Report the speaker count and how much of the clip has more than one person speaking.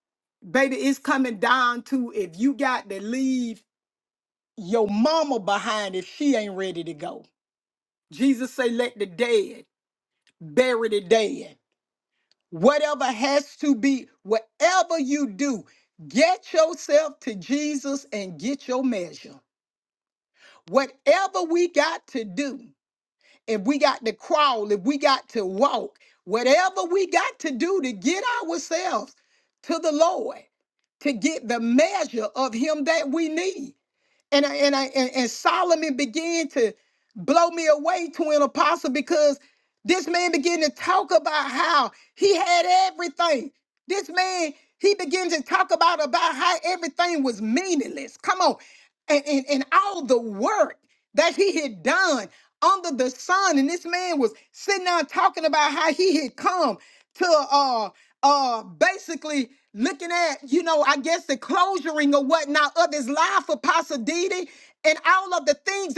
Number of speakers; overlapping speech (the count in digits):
1, no overlap